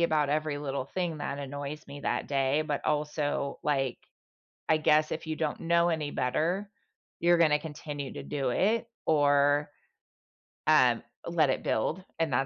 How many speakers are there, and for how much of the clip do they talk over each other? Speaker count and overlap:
1, no overlap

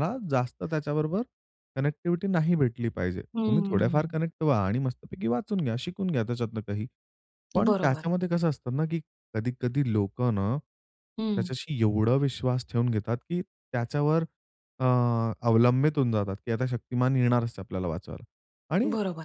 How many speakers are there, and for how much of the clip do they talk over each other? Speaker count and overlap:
2, about 8%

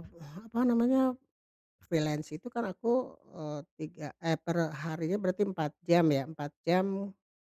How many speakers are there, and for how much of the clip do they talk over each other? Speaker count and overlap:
1, no overlap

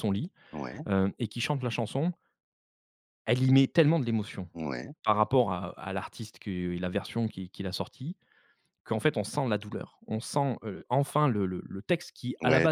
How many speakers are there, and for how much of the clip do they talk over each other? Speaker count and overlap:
2, about 3%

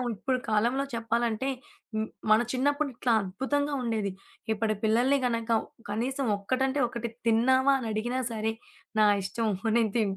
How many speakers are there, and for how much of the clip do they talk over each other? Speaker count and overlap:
1, no overlap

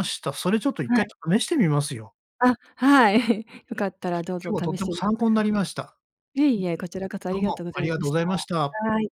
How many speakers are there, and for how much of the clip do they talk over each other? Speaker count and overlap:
2, about 19%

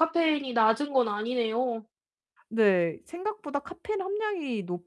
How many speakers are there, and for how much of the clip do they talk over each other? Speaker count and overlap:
2, no overlap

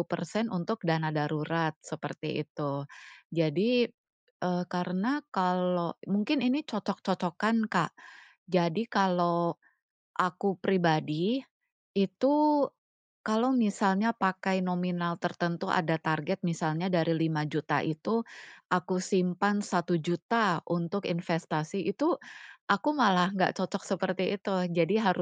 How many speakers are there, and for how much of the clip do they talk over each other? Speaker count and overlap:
1, no overlap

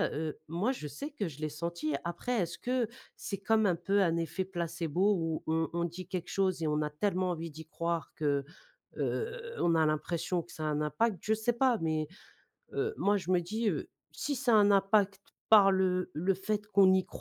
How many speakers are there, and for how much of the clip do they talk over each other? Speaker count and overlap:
1, no overlap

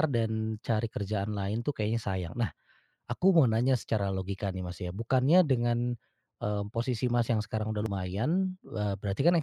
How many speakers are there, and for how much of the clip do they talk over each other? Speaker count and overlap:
1, no overlap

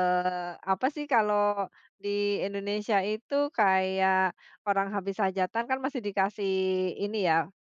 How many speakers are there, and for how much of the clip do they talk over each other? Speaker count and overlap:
1, no overlap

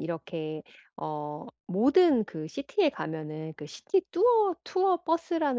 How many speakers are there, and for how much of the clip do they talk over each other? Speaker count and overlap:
1, no overlap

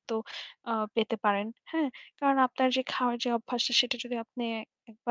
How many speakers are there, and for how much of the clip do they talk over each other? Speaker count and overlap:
1, no overlap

